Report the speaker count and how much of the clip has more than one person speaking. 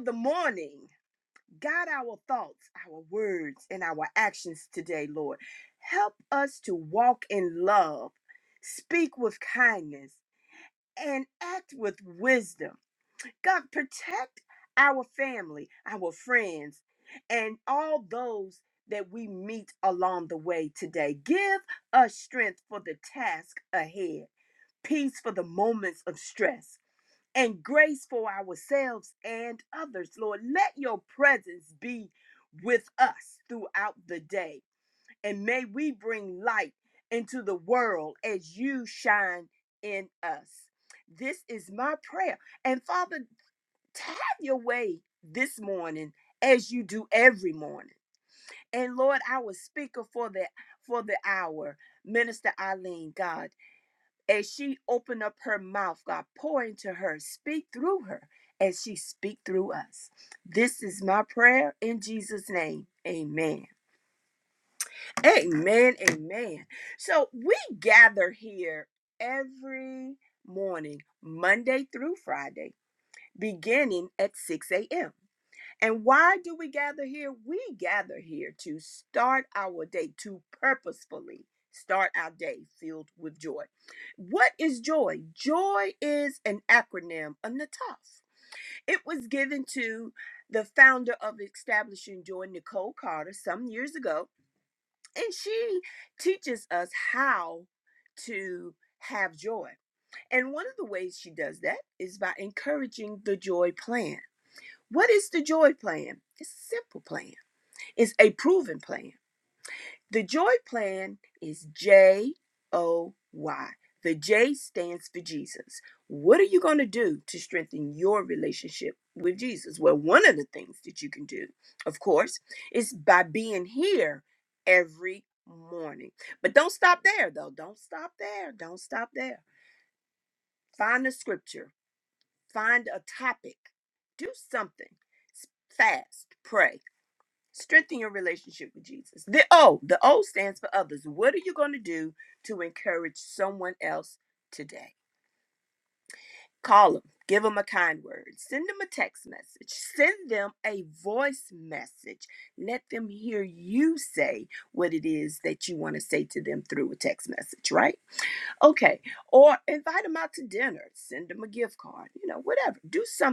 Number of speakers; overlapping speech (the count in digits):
1, no overlap